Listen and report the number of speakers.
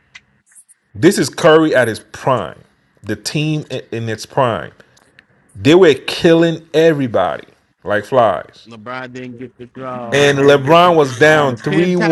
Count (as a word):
two